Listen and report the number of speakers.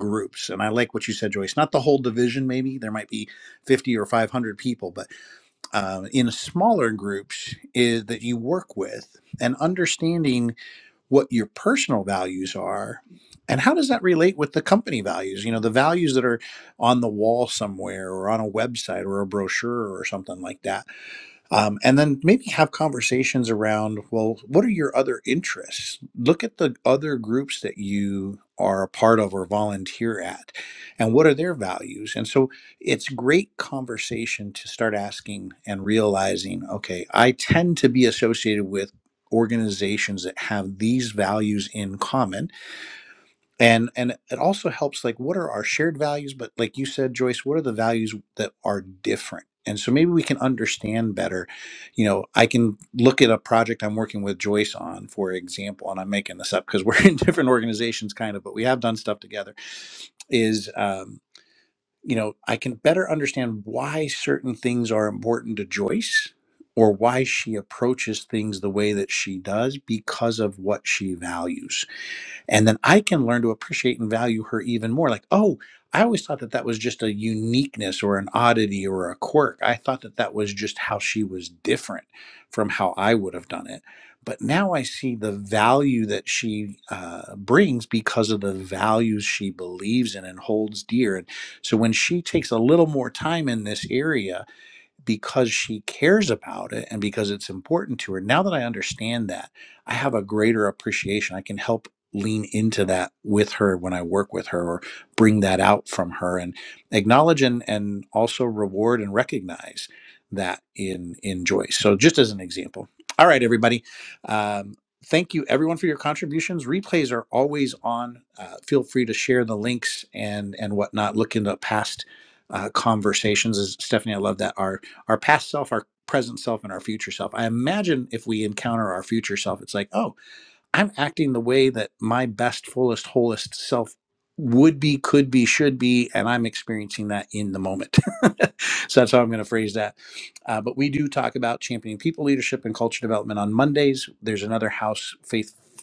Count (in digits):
1